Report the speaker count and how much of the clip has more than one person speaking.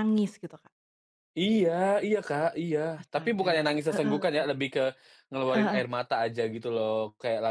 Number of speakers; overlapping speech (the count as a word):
two, about 19%